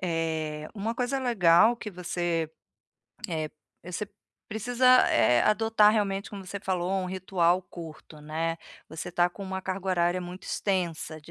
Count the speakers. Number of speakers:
1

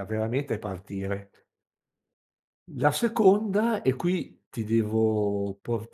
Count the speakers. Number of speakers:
1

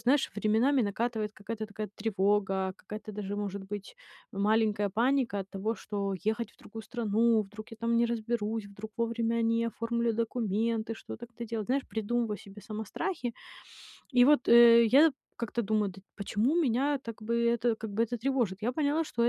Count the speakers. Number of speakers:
1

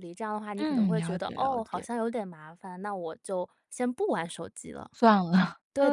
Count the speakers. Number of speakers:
2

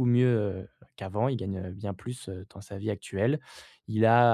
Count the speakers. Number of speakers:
1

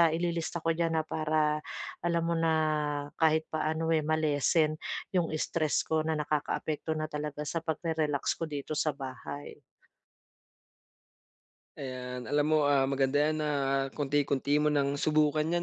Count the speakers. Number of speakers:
2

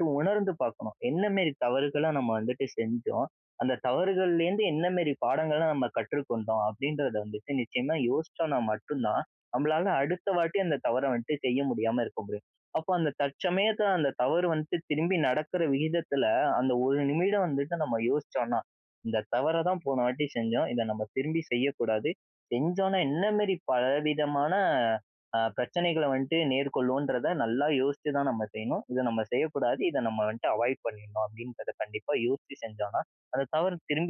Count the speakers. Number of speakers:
1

